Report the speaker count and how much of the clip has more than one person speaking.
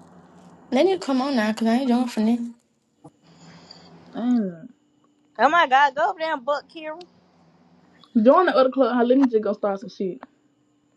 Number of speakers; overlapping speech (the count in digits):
3, no overlap